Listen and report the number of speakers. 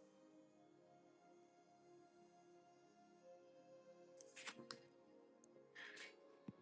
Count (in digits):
0